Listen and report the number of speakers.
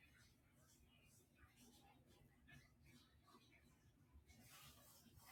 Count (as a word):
zero